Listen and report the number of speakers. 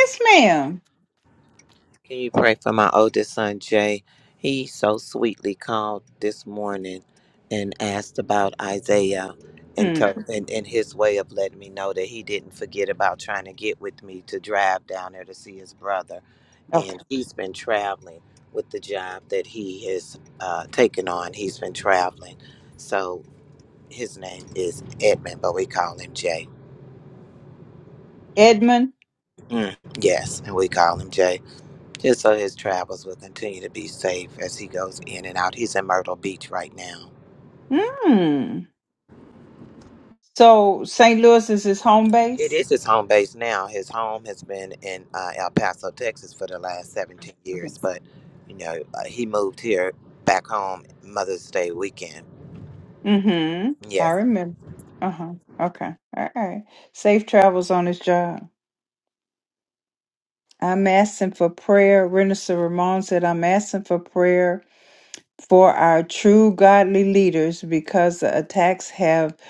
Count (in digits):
2